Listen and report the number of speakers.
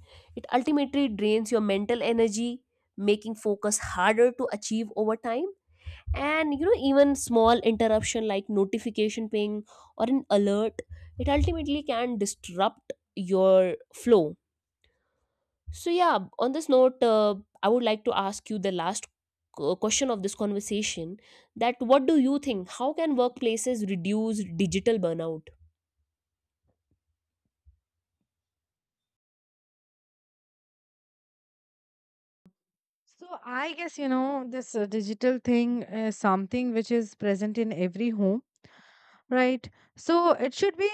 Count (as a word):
two